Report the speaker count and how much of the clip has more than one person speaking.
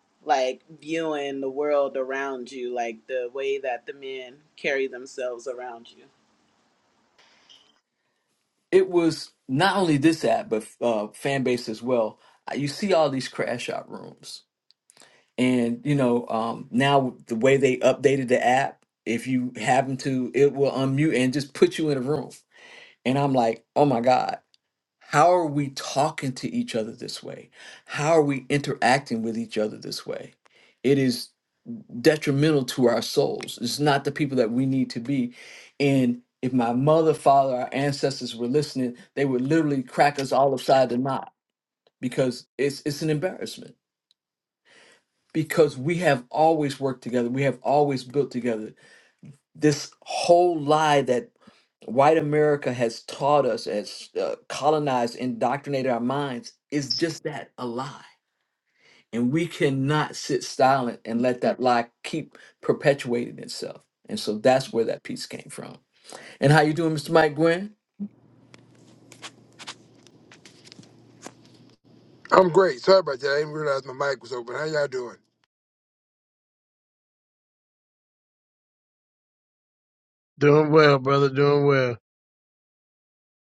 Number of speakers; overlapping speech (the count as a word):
four, no overlap